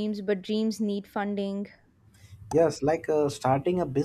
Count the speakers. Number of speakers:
two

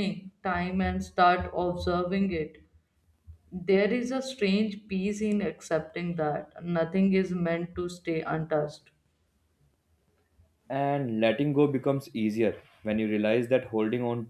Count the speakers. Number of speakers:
two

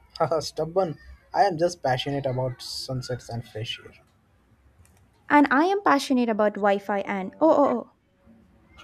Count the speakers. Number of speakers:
two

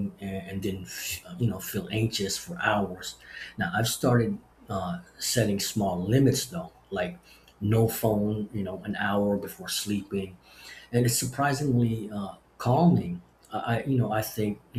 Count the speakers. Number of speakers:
one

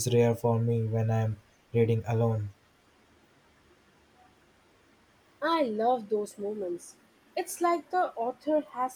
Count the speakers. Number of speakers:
two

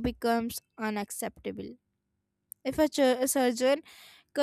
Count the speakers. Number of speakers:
one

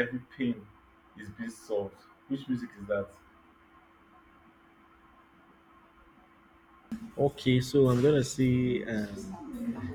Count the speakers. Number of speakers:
two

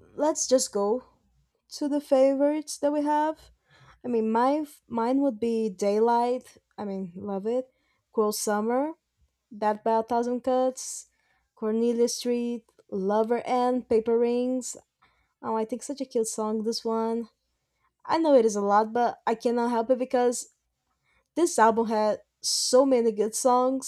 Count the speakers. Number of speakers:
one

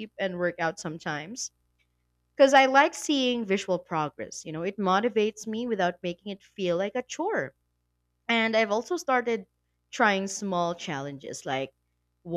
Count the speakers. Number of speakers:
one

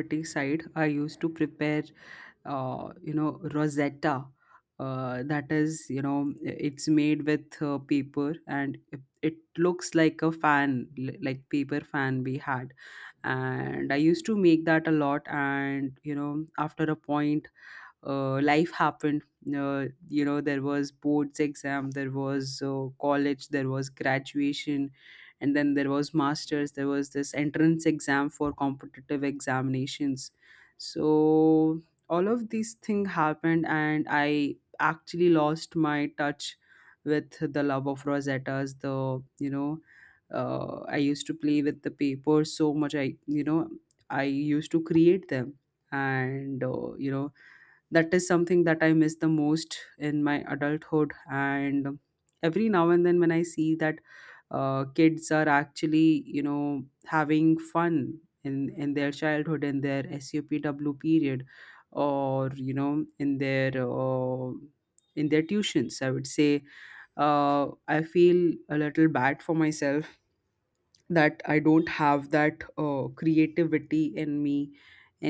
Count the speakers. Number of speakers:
one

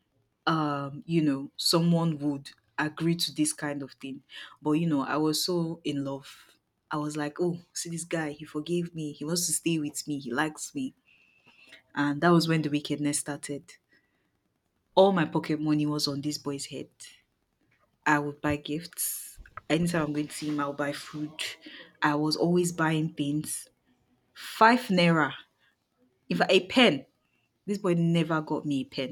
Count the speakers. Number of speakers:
one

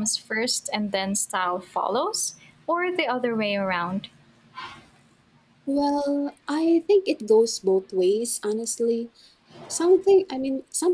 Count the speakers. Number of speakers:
two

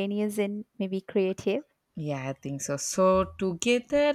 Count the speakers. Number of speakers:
two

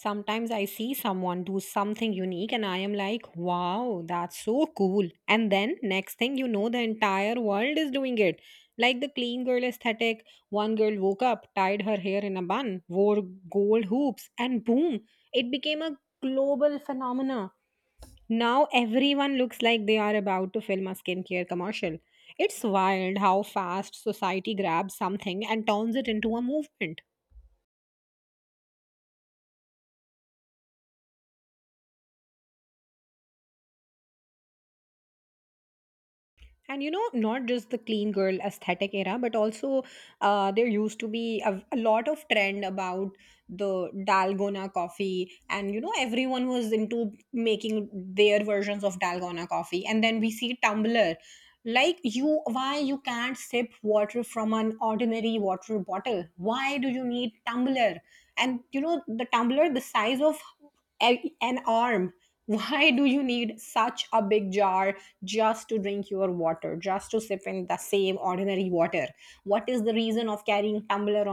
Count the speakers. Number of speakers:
one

